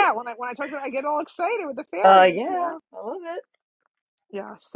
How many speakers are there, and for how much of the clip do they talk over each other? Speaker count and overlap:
two, about 16%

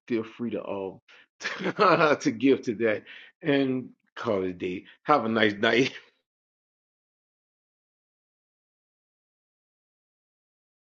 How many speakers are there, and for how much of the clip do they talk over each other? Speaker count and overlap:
one, no overlap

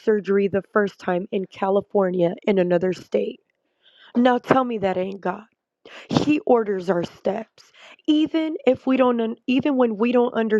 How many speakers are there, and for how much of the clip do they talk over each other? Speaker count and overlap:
one, no overlap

